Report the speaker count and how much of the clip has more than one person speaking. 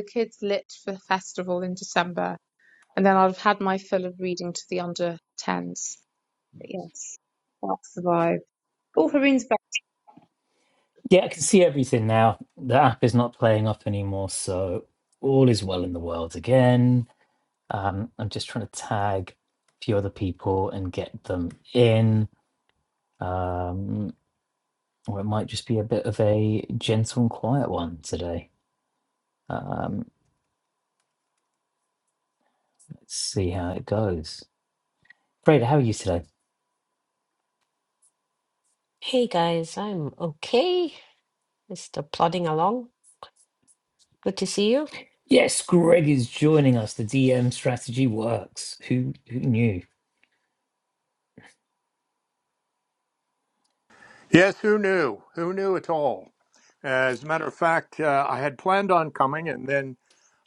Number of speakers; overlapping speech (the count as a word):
four, no overlap